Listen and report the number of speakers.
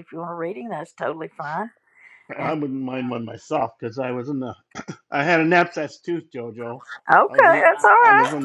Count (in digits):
2